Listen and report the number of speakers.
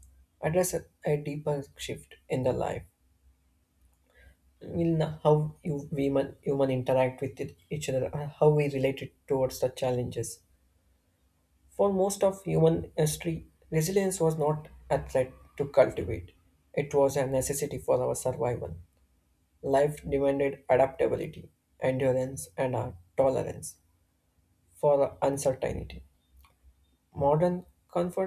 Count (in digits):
1